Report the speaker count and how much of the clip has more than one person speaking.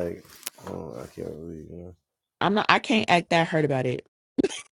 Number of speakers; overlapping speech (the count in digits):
2, no overlap